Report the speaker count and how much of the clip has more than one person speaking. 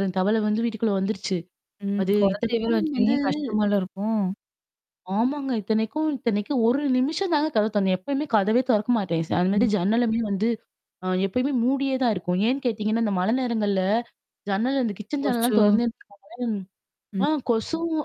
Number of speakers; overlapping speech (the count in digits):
2, about 10%